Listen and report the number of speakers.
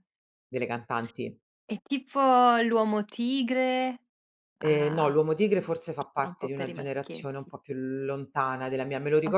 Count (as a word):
two